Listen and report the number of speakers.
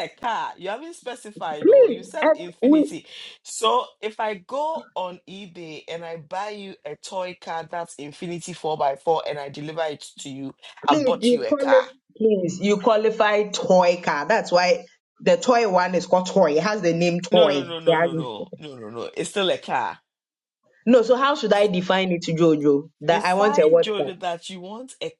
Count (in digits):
2